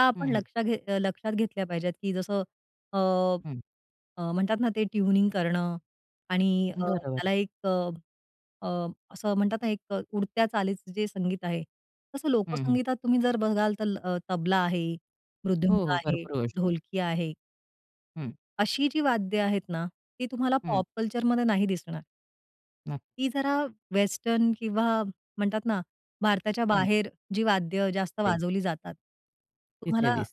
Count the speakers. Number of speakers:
2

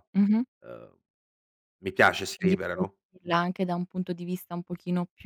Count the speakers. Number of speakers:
2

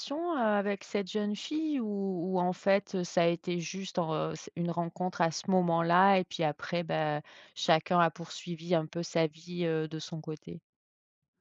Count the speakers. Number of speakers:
1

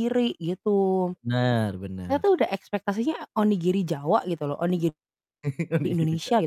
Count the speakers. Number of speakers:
2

